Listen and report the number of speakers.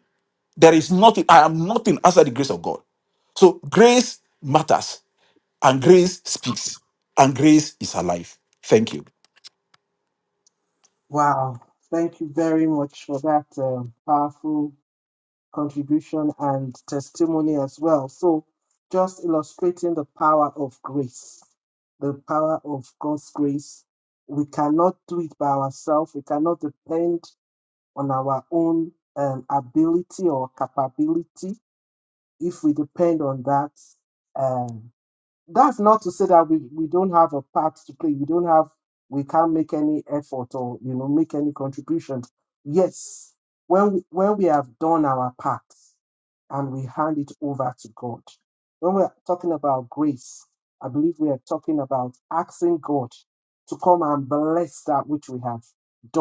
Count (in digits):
2